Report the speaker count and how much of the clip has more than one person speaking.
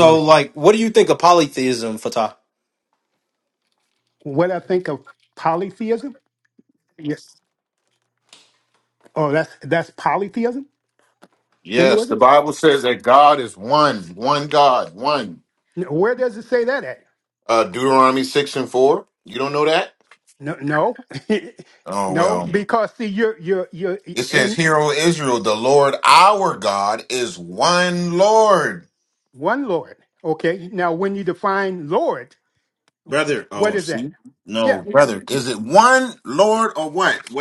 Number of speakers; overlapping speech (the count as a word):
three, about 6%